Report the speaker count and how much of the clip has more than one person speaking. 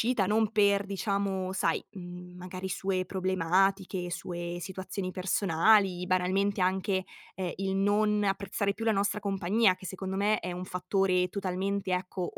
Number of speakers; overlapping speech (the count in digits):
1, no overlap